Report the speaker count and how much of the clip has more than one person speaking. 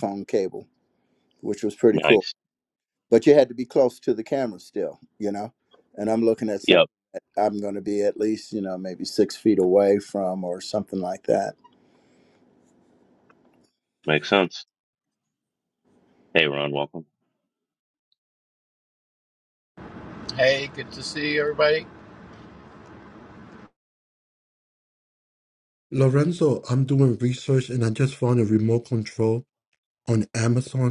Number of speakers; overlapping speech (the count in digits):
4, about 1%